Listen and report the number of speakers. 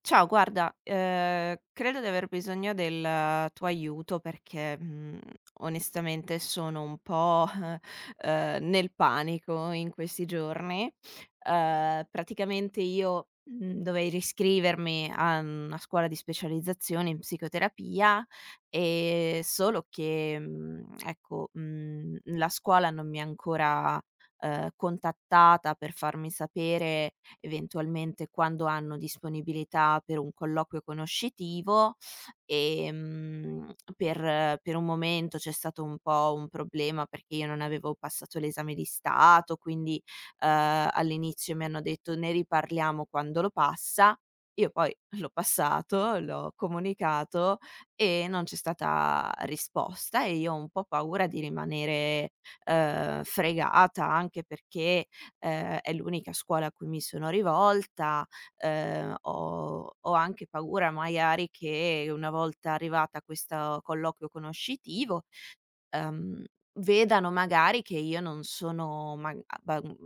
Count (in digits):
1